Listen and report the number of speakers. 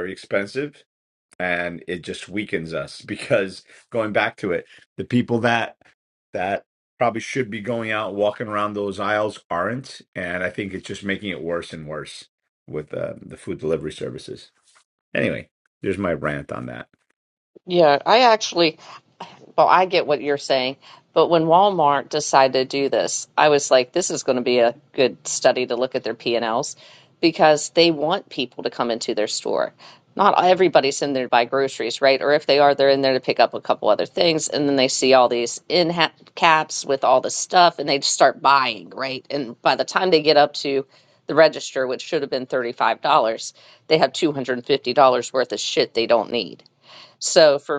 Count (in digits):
2